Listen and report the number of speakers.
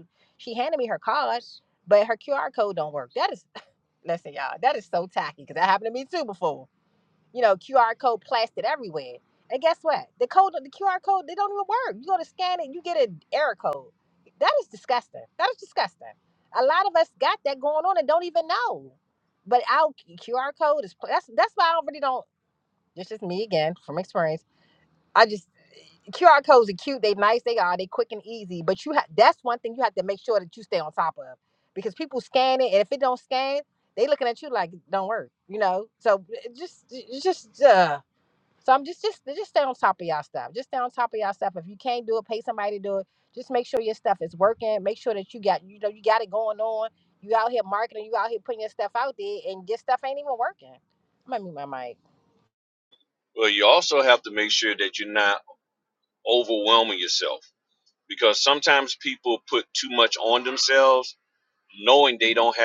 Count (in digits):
2